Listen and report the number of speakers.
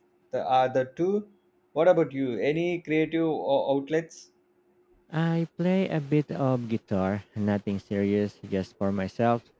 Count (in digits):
2